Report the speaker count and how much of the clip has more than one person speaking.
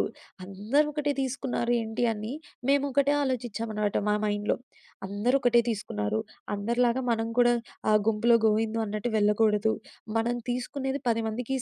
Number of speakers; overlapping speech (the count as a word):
one, no overlap